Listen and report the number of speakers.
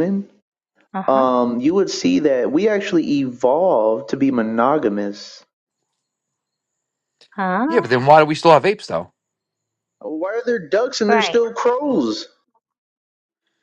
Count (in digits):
3